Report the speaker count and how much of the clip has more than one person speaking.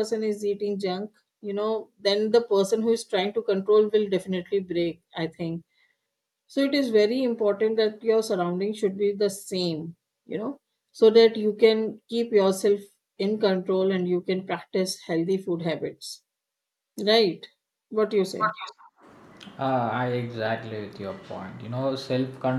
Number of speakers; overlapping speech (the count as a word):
two, no overlap